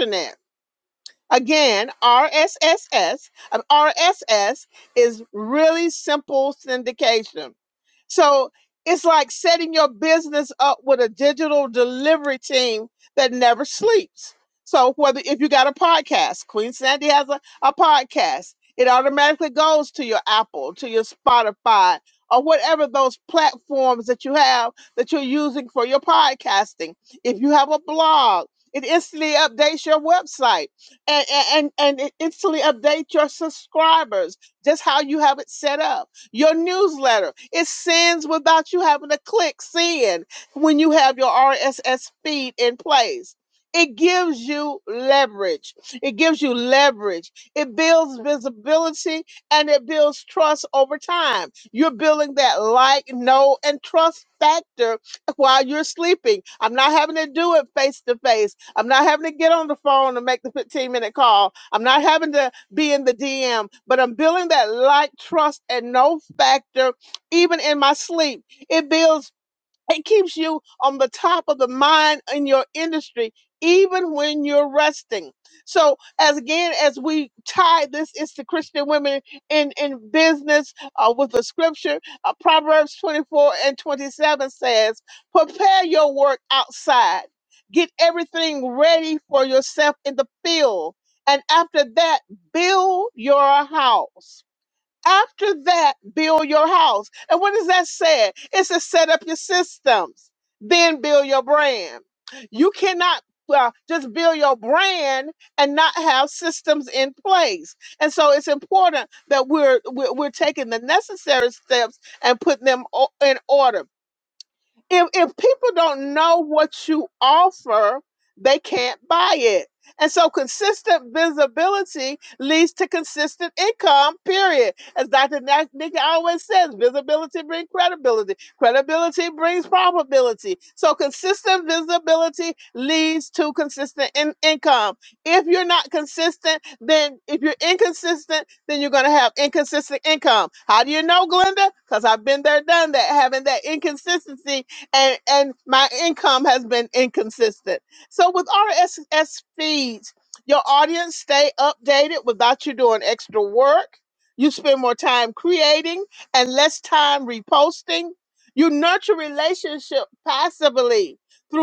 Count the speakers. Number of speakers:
one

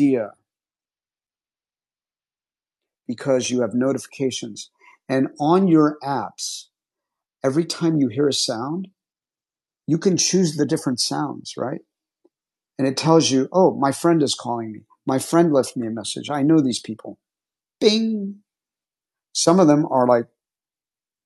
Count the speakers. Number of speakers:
one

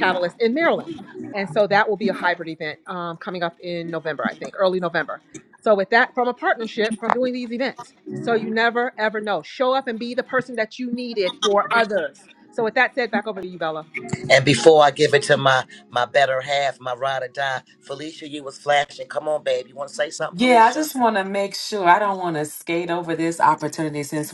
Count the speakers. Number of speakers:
three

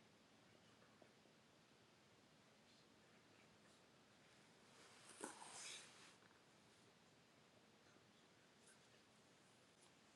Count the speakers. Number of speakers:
zero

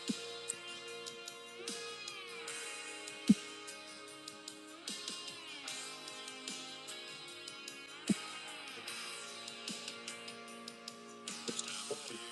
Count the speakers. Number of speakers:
zero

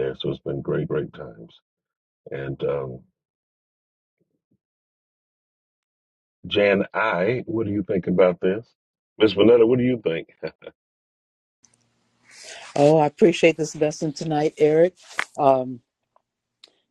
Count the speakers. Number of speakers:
two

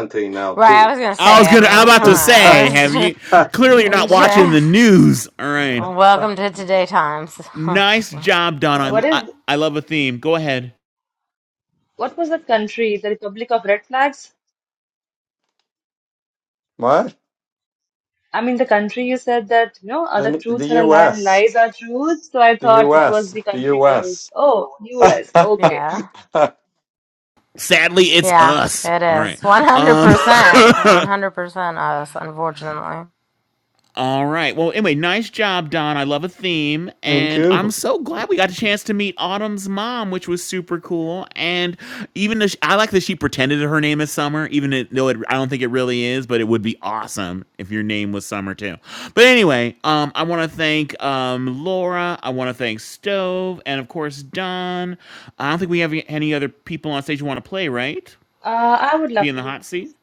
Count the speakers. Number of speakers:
four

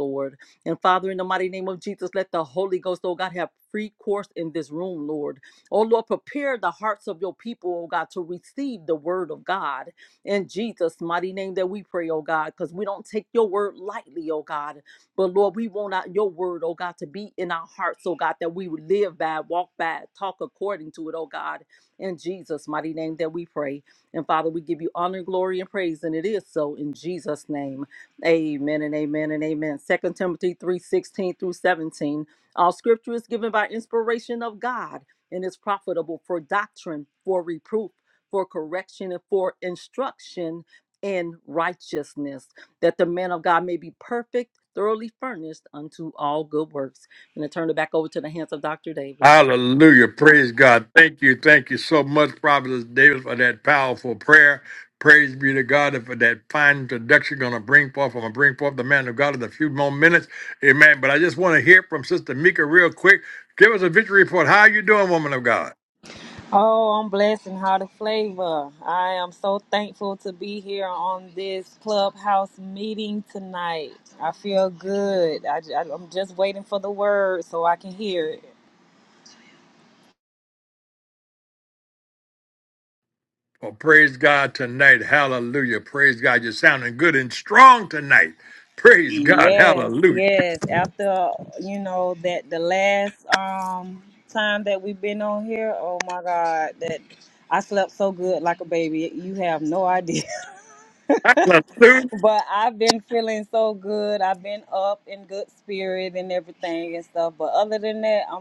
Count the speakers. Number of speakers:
three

